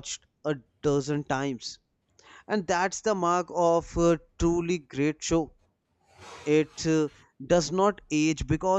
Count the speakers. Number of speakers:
1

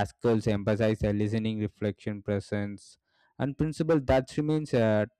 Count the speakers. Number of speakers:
1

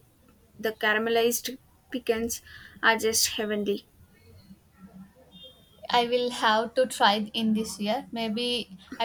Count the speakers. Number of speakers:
2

